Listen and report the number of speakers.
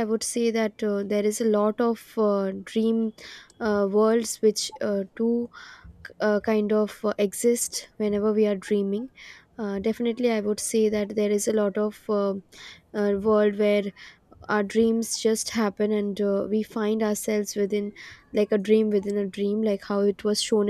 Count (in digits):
1